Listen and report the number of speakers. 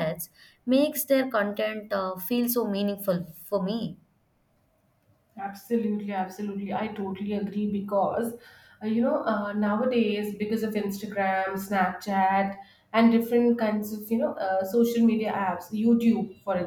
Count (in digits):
2